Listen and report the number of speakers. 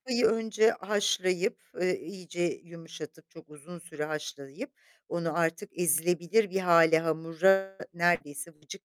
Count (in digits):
1